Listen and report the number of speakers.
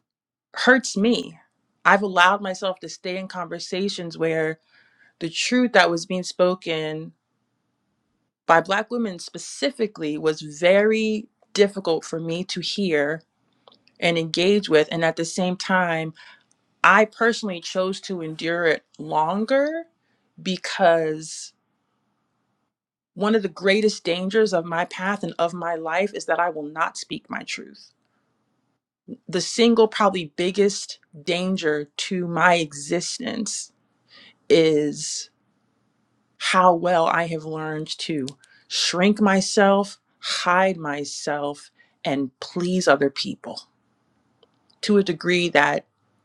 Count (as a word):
one